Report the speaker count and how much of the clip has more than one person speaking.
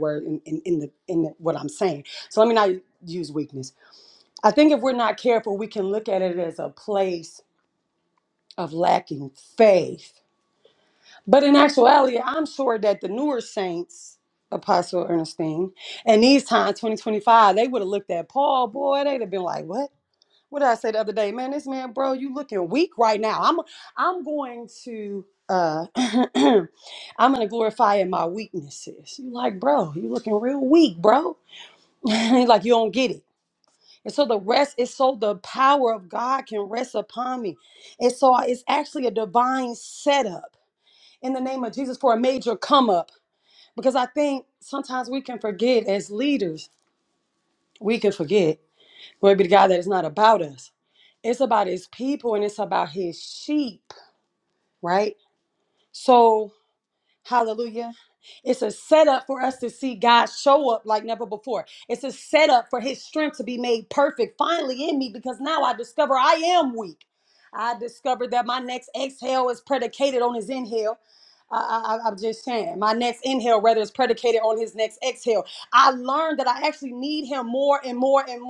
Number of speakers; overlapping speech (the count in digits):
1, no overlap